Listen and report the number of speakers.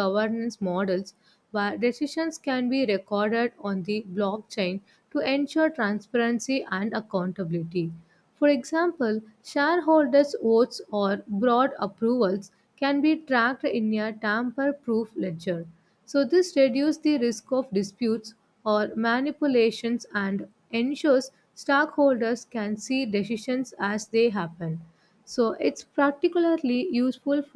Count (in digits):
1